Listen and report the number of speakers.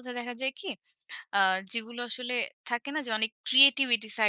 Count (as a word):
one